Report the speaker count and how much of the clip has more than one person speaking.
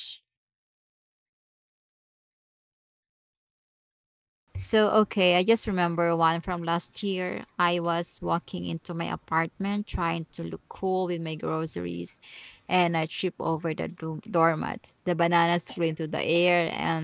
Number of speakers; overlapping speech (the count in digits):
1, no overlap